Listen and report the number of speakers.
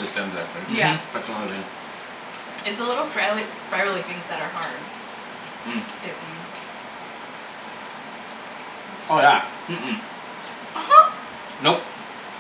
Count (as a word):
three